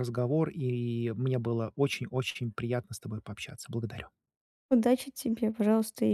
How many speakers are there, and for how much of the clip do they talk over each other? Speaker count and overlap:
2, no overlap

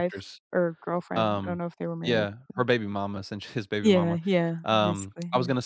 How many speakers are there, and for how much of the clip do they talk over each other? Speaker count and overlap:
2, about 36%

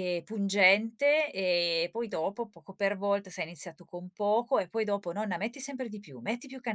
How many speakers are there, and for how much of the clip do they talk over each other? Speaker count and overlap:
1, no overlap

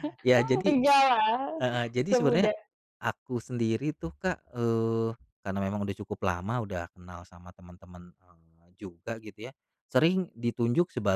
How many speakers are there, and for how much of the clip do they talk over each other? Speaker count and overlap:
2, about 5%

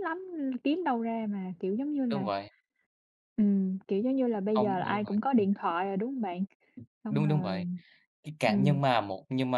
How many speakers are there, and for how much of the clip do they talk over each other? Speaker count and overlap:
2, about 20%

